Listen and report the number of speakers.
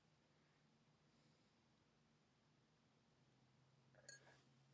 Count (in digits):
0